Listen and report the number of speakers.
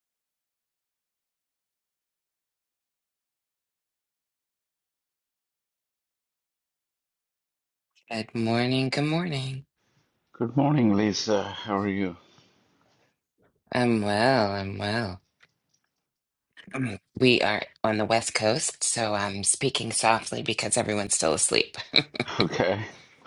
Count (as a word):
two